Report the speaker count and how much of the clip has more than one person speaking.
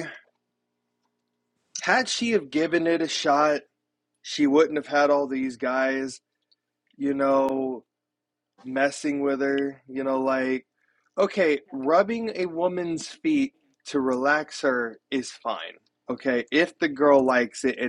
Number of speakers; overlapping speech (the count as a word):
one, no overlap